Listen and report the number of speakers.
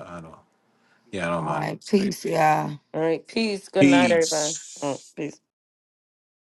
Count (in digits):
3